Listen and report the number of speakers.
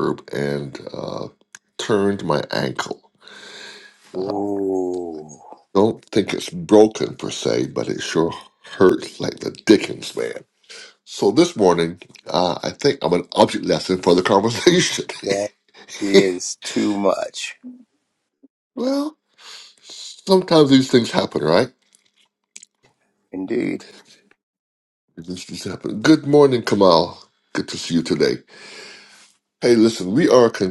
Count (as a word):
two